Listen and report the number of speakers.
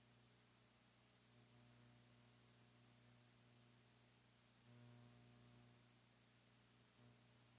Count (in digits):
0